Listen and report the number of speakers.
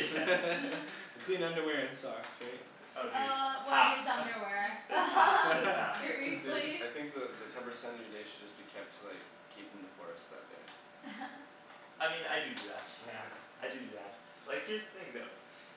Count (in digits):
4